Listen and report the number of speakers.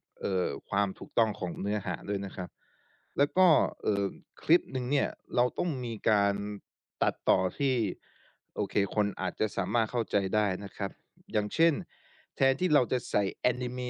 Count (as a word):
one